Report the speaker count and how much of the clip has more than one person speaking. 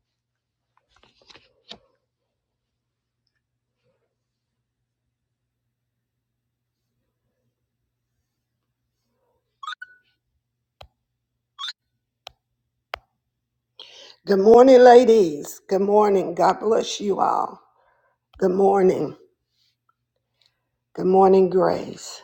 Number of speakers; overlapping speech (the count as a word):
one, no overlap